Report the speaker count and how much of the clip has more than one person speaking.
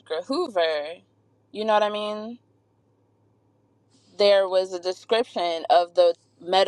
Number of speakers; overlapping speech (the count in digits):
1, no overlap